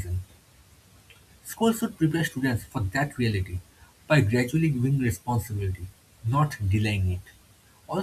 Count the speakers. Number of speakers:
1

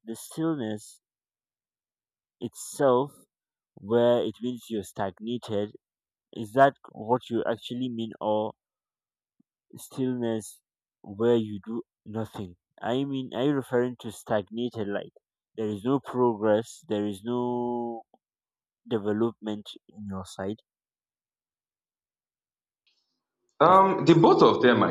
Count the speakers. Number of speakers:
2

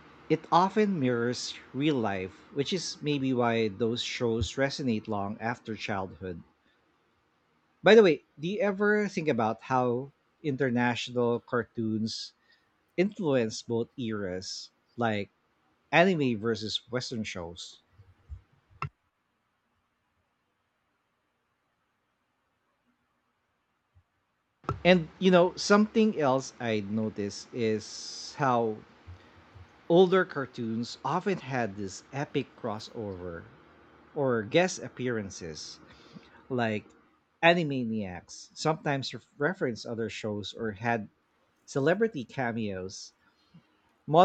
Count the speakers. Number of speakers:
1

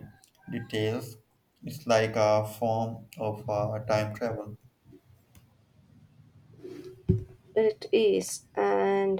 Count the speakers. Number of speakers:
2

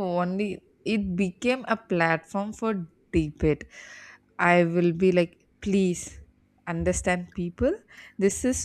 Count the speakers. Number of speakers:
1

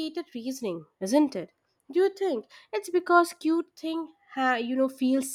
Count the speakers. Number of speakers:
1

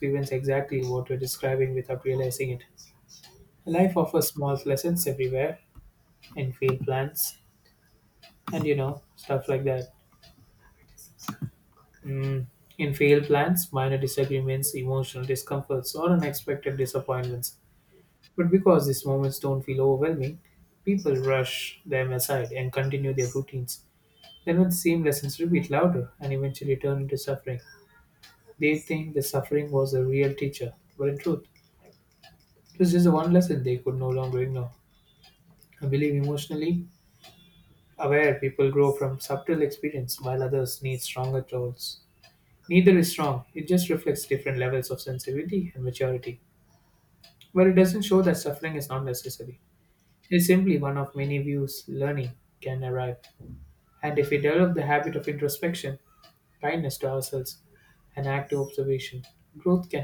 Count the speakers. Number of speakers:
1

